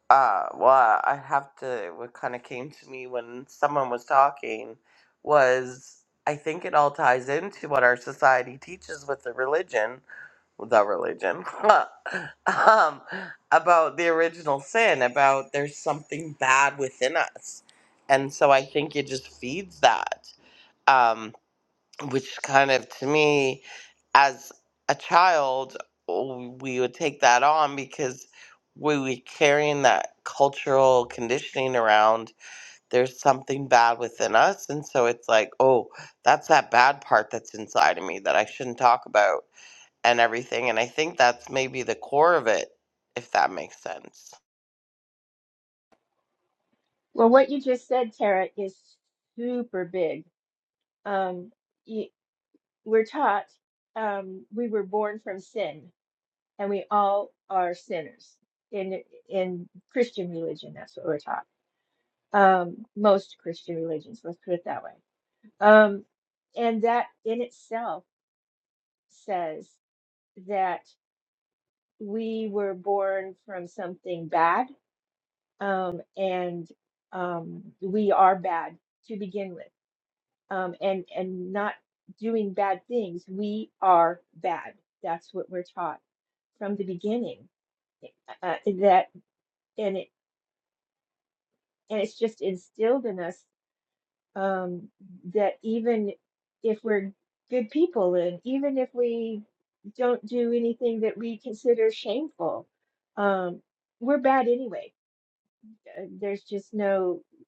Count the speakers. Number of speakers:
2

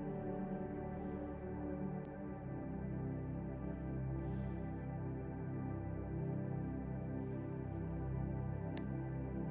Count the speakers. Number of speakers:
0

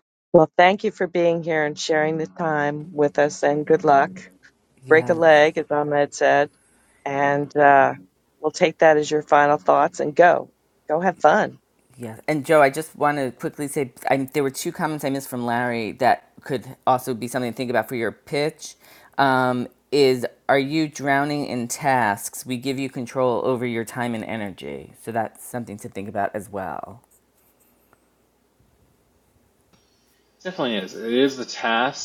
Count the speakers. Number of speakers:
3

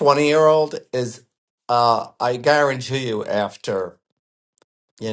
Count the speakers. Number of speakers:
1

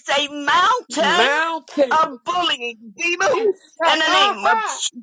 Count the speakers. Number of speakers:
2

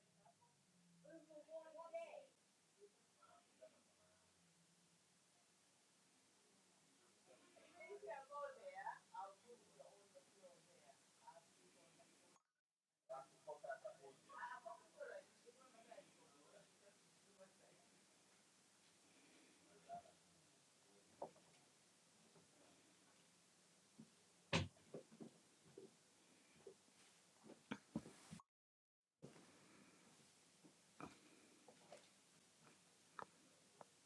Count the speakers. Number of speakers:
0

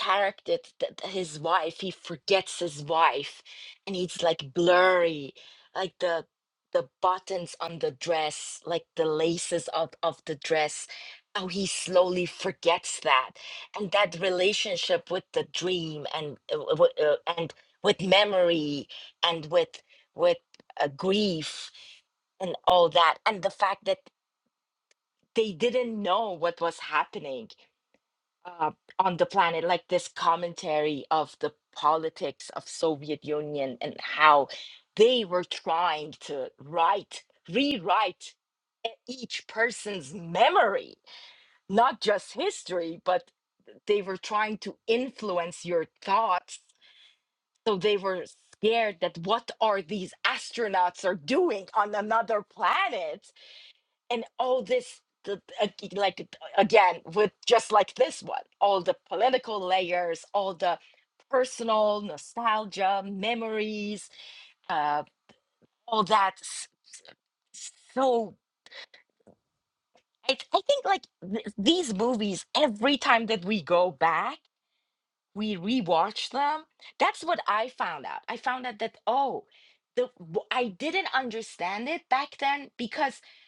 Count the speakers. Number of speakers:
1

